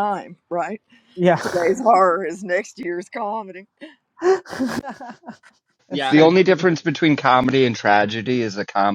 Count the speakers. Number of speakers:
3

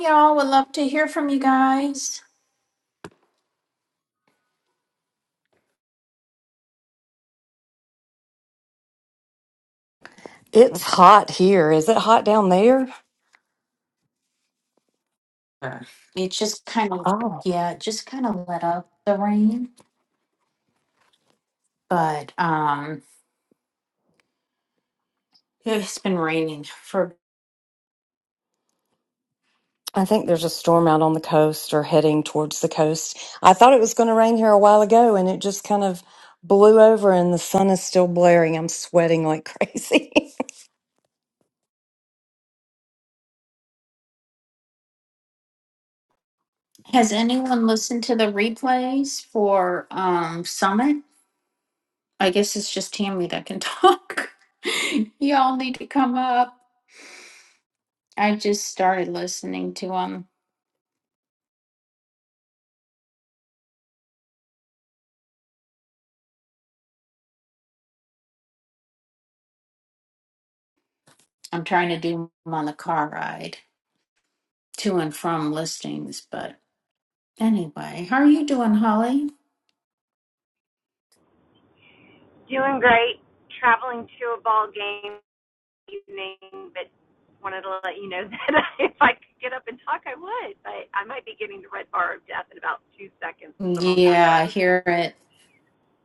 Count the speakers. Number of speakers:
3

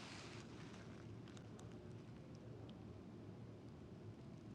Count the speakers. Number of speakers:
0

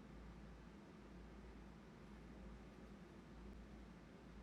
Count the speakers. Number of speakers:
0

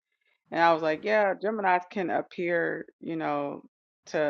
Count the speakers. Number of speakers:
1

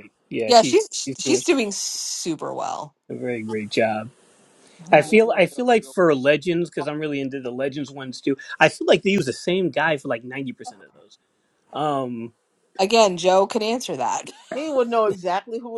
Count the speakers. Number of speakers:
3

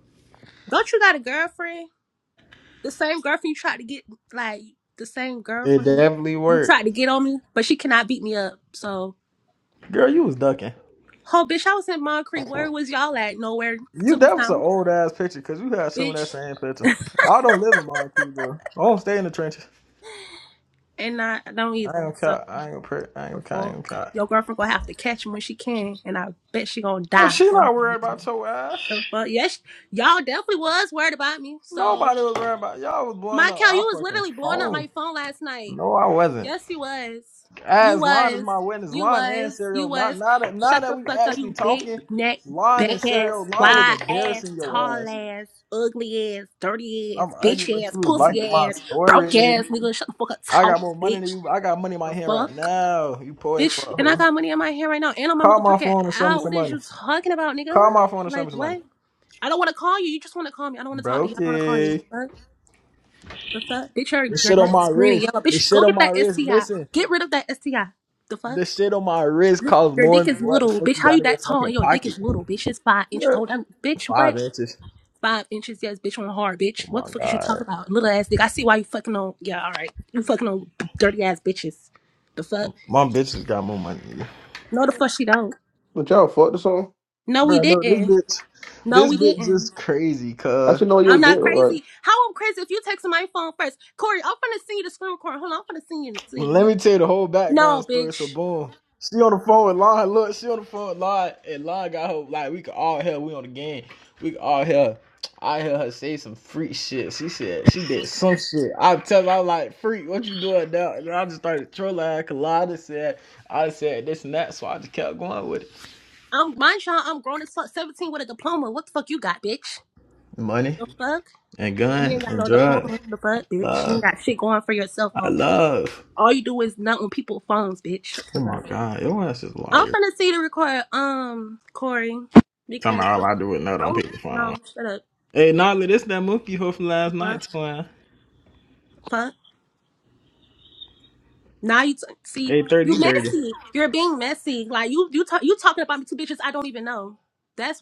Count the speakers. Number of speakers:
3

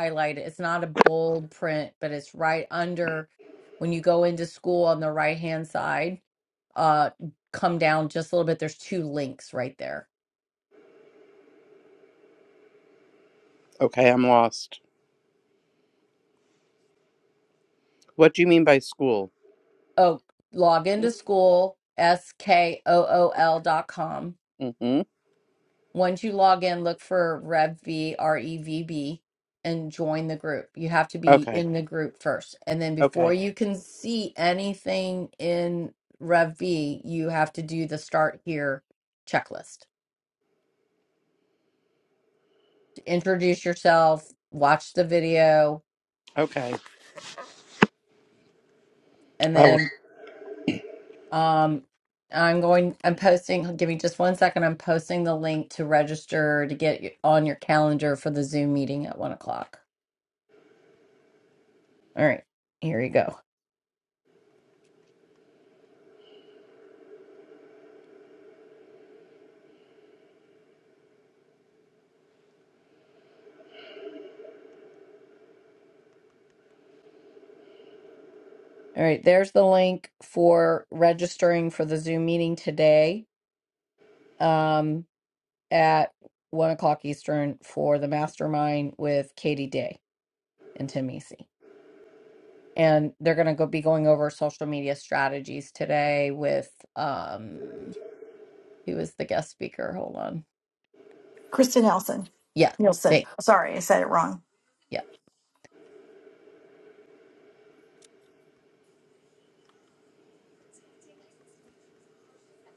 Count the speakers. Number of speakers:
3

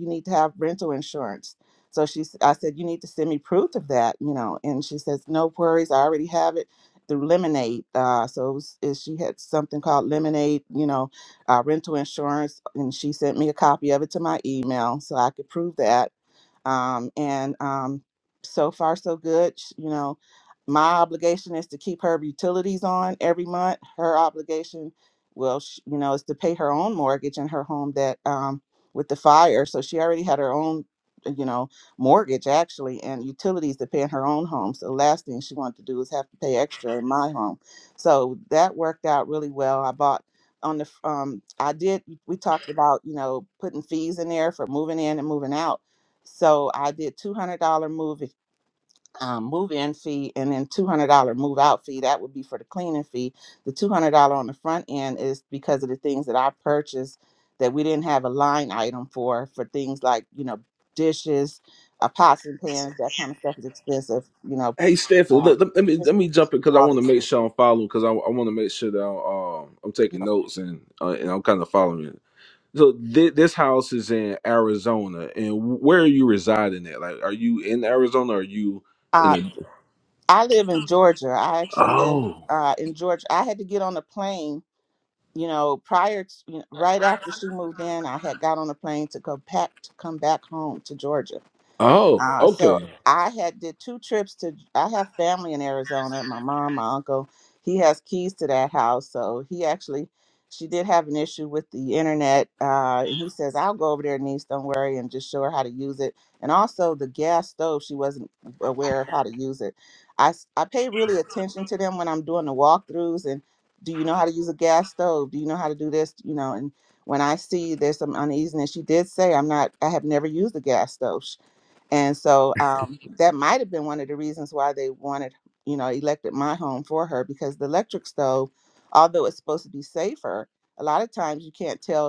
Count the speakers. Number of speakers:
2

